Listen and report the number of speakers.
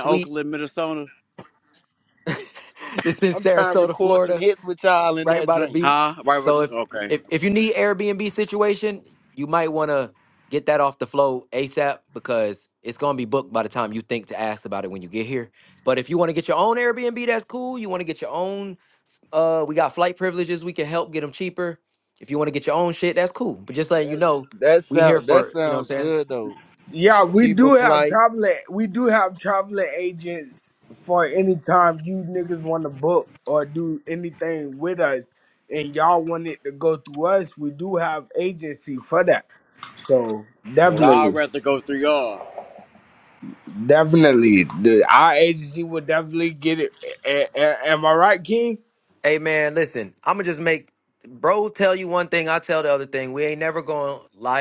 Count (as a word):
four